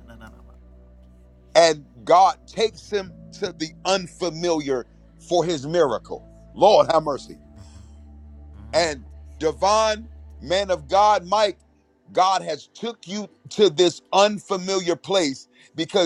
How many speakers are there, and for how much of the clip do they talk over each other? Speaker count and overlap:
one, no overlap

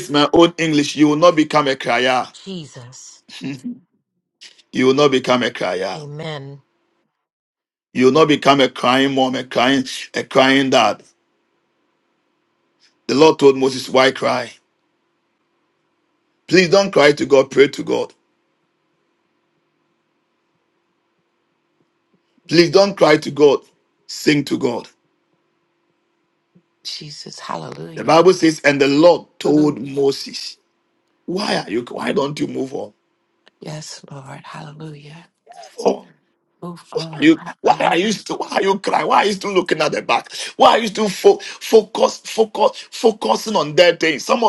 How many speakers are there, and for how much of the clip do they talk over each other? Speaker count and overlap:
three, about 4%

